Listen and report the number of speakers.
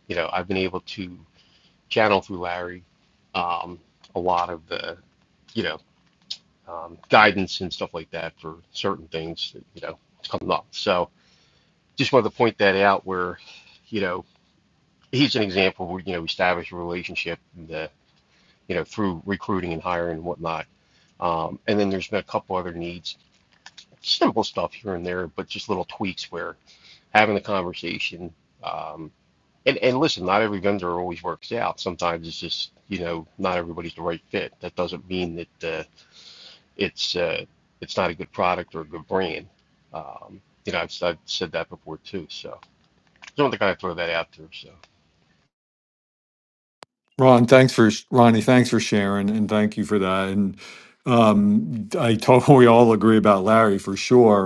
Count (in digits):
2